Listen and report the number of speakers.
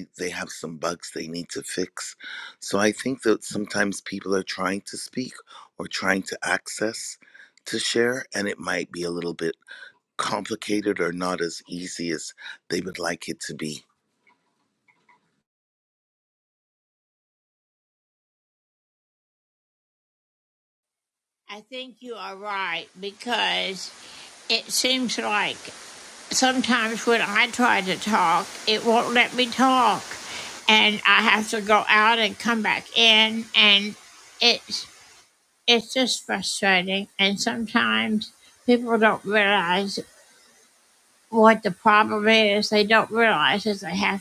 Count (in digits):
2